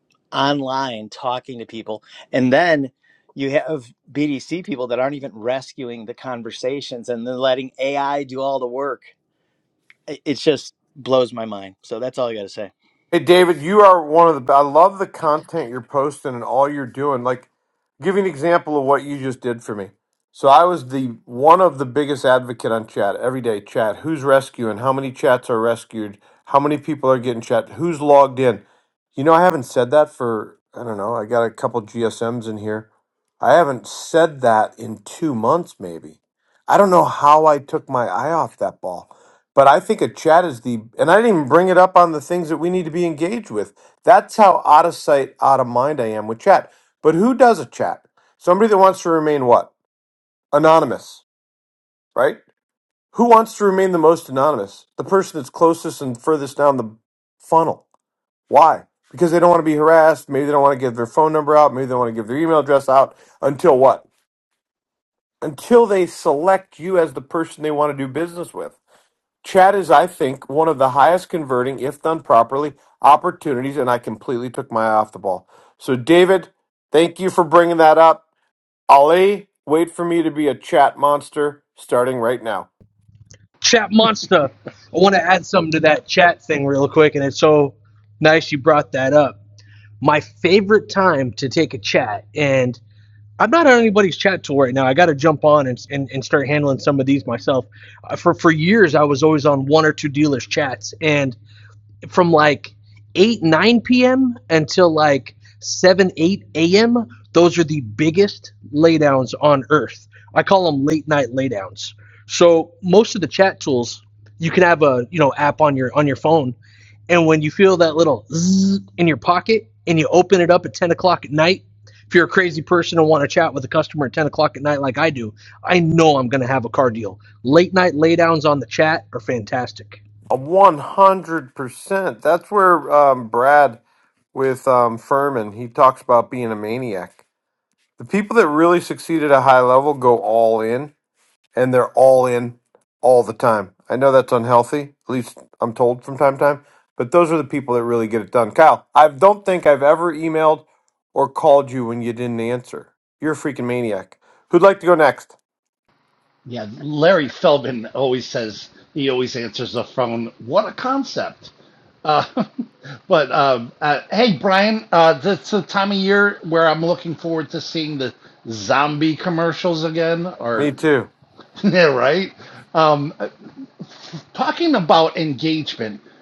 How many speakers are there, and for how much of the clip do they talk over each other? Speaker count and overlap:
4, under 1%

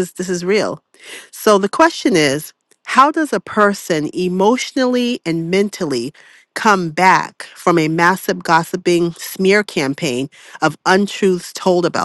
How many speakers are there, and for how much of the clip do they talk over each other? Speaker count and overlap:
1, no overlap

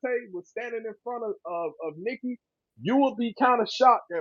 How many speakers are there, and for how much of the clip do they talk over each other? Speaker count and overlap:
1, no overlap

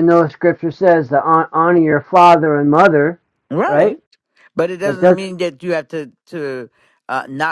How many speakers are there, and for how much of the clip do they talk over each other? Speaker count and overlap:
2, about 8%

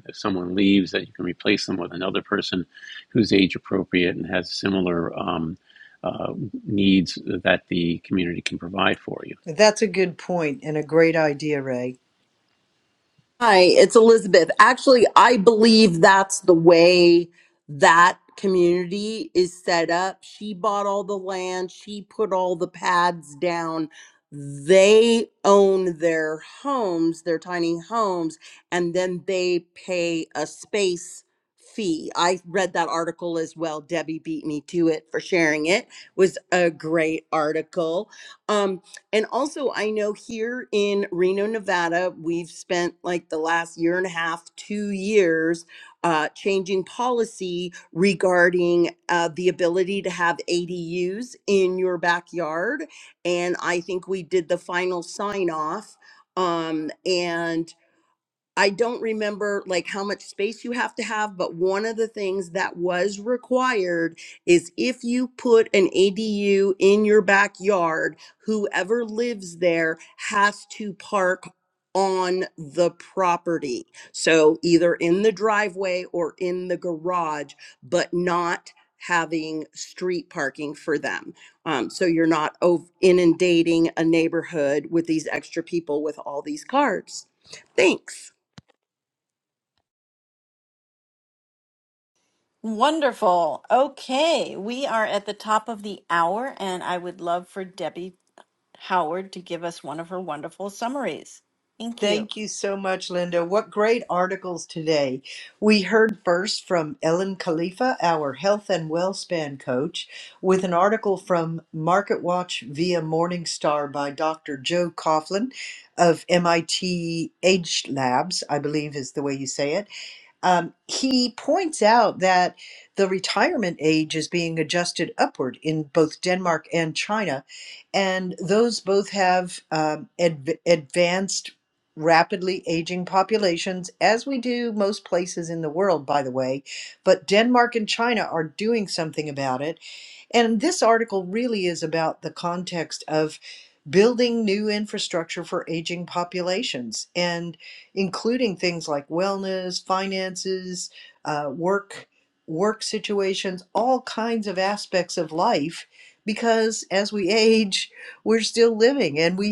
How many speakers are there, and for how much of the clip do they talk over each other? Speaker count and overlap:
4, under 1%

